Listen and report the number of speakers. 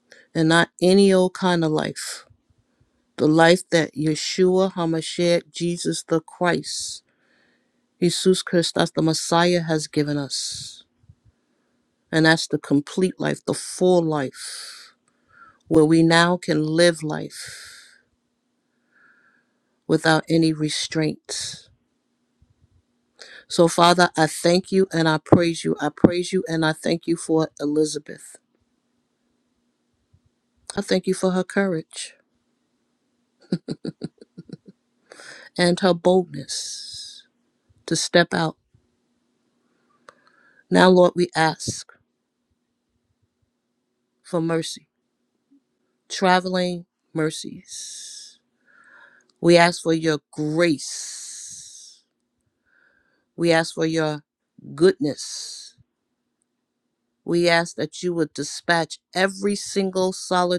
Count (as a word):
one